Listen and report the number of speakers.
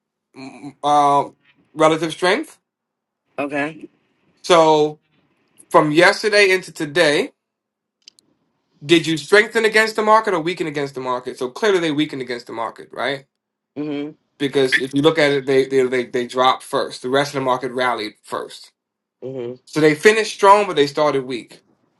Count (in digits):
2